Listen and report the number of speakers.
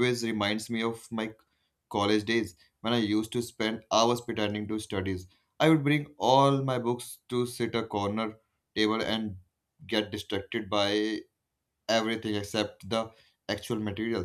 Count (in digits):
1